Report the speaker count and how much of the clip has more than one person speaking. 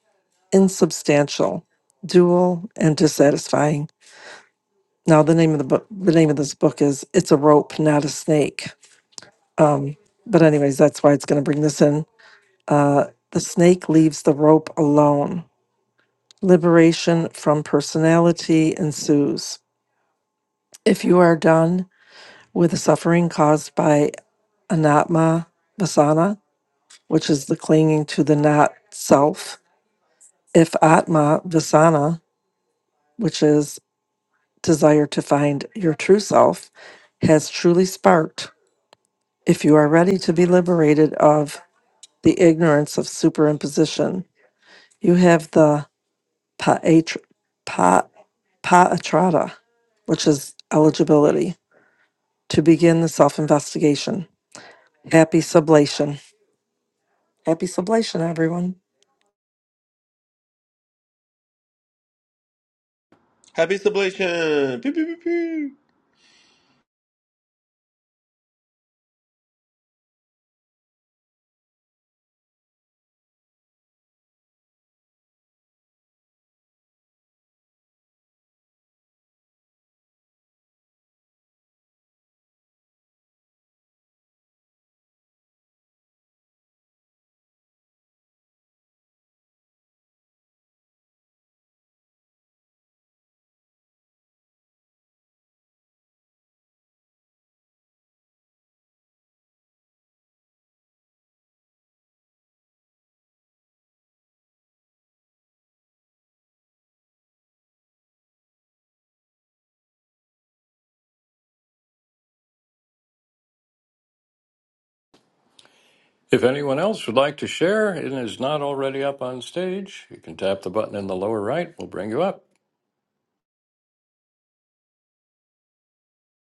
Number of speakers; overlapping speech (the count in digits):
3, no overlap